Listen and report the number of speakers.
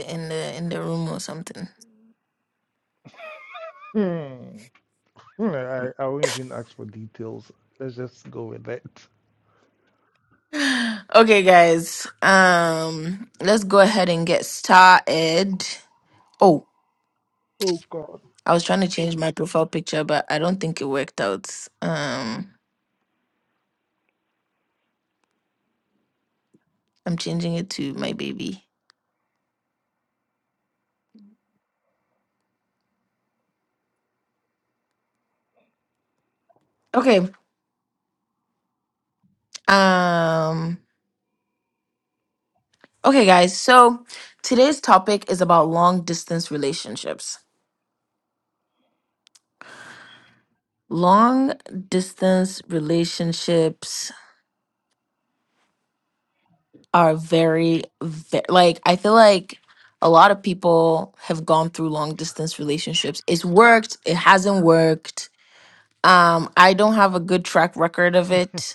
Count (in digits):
2